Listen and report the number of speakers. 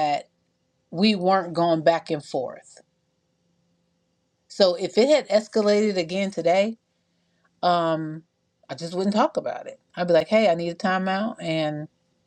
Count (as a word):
one